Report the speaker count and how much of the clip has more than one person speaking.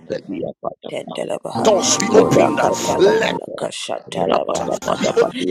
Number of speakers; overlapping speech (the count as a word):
three, about 62%